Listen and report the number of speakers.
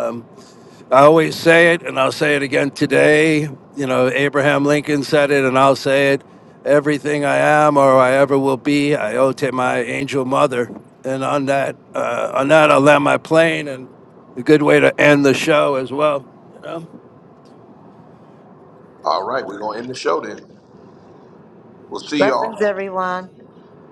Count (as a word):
three